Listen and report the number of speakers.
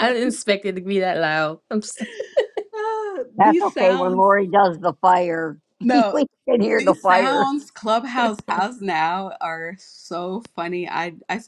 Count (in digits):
3